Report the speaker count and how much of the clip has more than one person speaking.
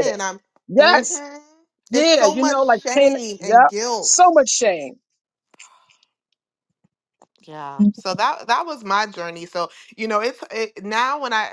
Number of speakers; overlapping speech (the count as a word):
two, about 19%